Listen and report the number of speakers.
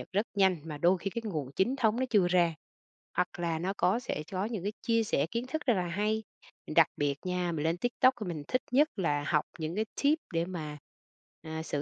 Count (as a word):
one